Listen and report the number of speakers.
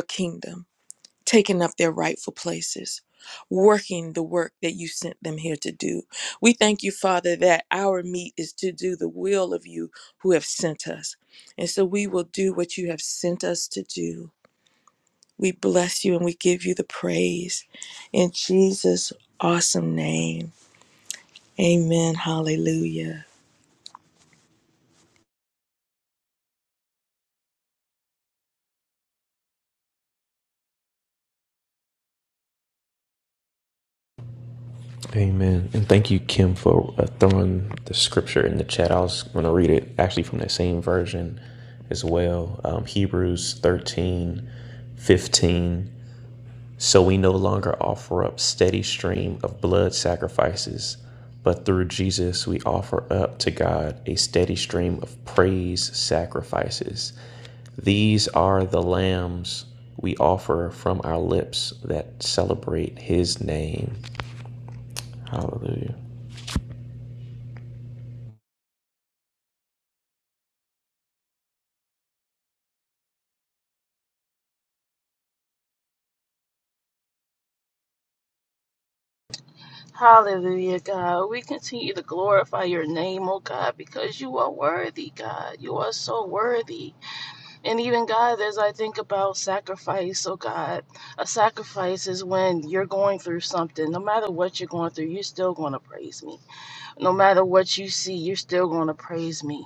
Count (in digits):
3